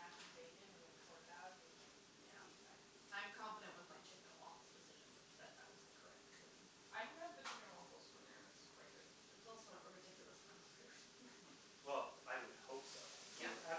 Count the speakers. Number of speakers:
4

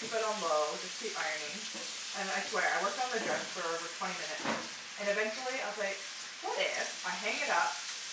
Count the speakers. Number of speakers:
1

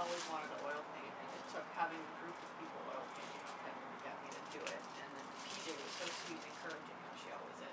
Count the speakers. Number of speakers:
1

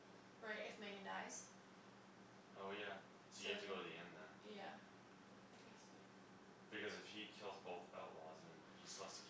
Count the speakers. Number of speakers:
2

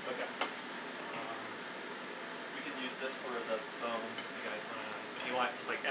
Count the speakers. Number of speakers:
1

